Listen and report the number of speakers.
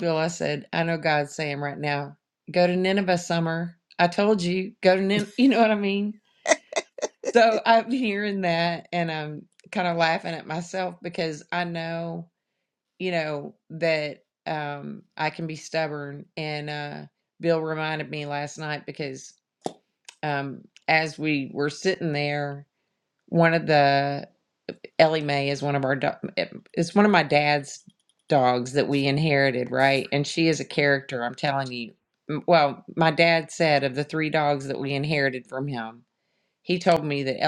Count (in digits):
1